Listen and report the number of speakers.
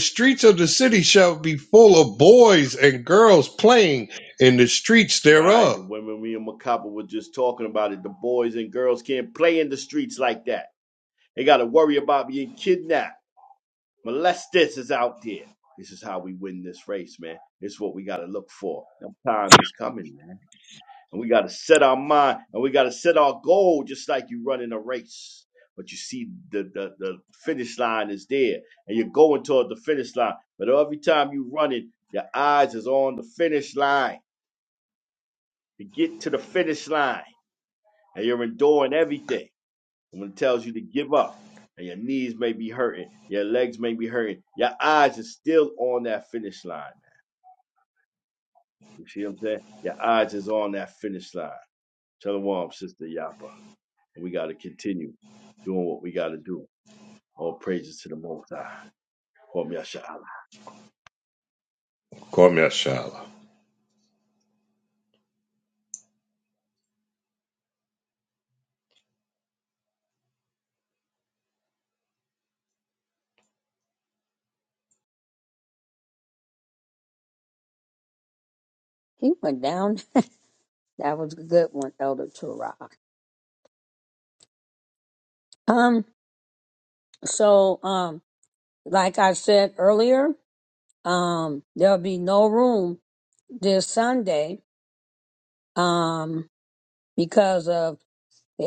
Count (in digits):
3